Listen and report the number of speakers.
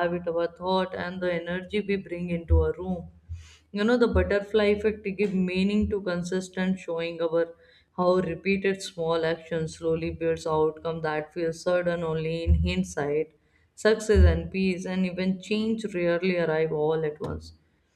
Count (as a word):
one